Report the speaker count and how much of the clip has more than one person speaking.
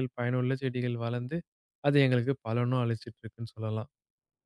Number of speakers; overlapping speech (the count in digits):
1, no overlap